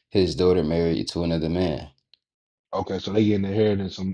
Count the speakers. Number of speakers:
2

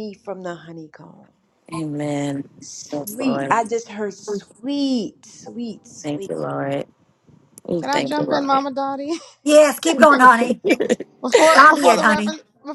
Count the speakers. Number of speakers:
4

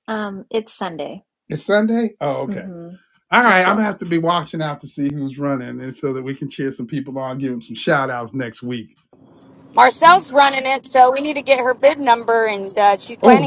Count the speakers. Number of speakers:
3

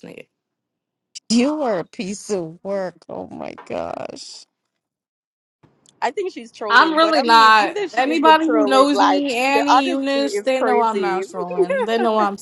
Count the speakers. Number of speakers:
3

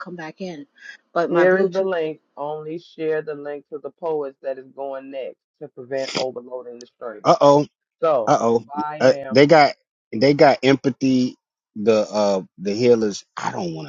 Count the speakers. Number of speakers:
3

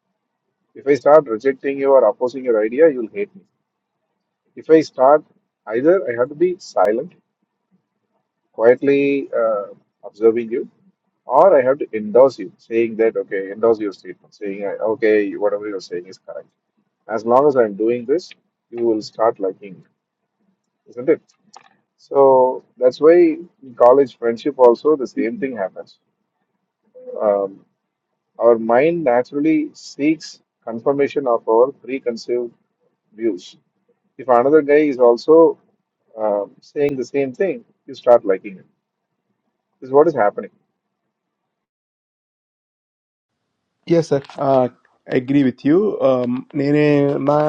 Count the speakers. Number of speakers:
2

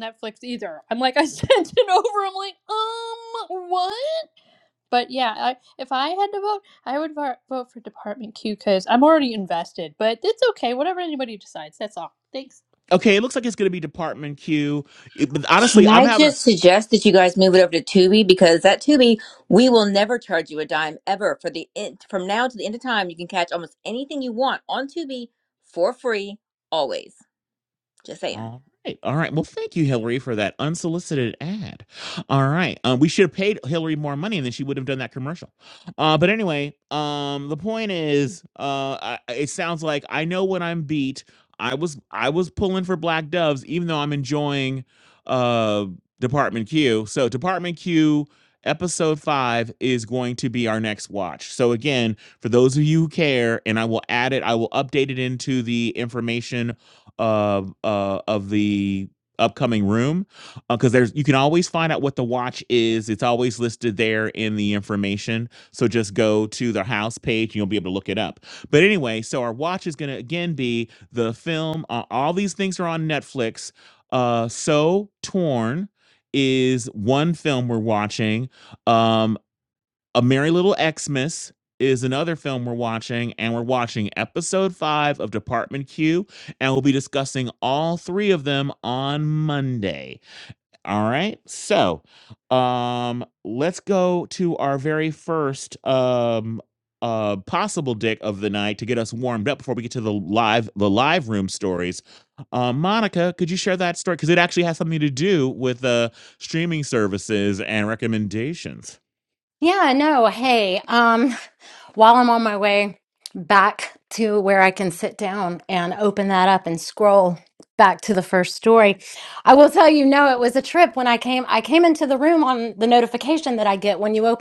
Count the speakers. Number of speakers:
4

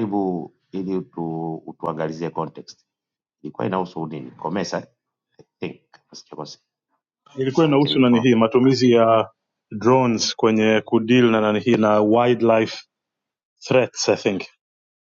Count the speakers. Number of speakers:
2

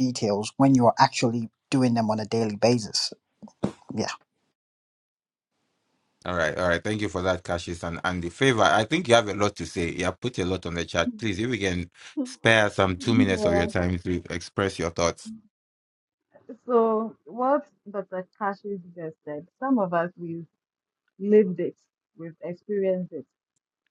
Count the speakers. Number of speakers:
3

